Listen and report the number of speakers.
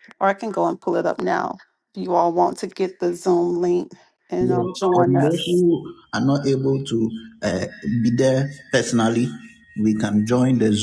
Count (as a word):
two